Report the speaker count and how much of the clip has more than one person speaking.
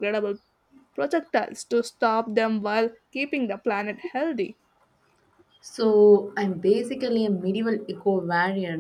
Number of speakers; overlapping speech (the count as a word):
two, no overlap